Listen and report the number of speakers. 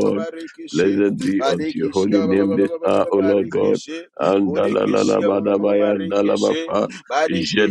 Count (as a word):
two